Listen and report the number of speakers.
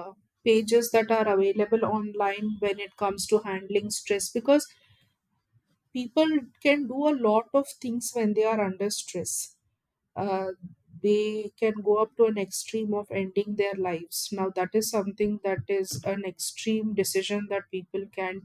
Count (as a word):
one